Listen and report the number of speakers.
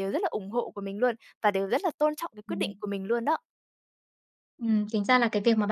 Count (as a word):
two